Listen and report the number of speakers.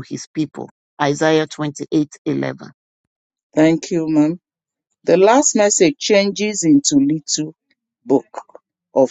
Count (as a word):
two